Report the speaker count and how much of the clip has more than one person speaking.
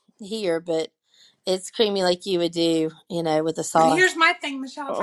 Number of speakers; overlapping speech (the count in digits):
2, about 5%